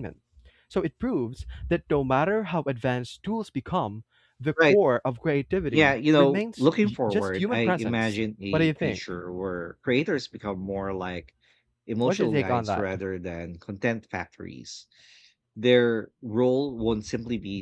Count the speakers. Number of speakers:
two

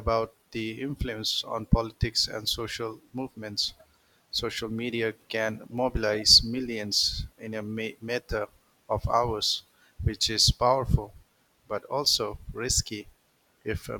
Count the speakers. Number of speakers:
one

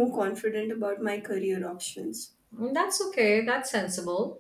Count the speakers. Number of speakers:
two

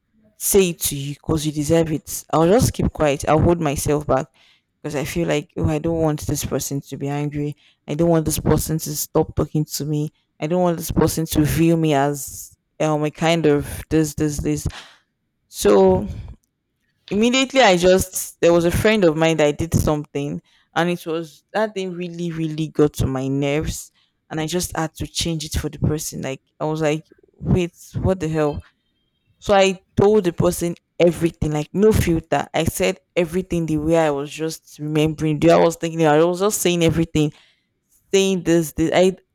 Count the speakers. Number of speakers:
one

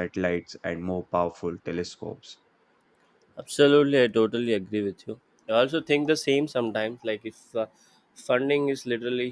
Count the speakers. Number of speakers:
two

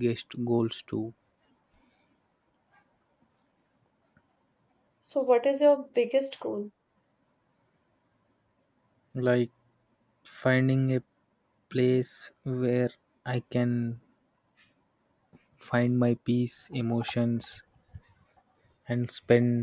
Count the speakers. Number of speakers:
two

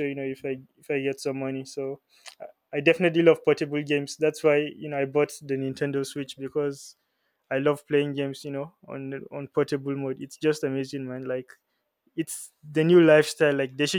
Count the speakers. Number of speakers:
one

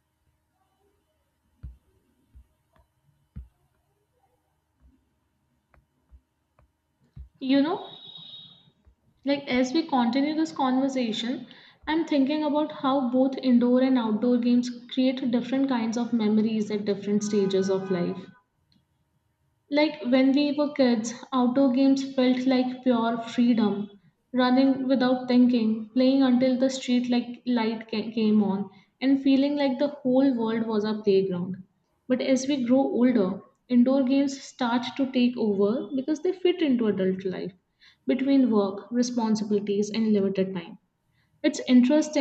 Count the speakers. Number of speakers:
one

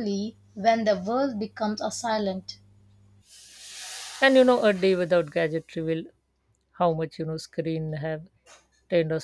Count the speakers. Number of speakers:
two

